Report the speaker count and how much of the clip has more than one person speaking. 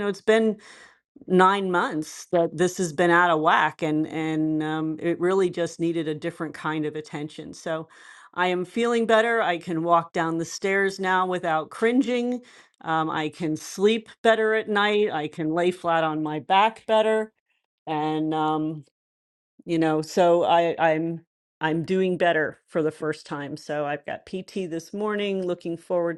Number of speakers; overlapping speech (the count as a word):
one, no overlap